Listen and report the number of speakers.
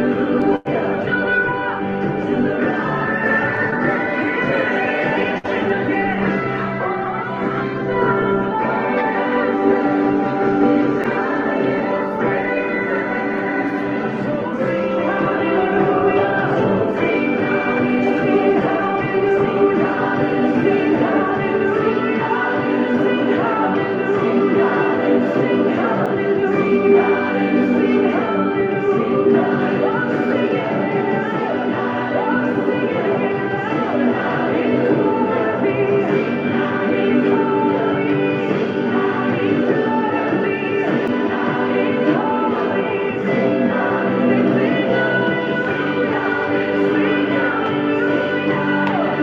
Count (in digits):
0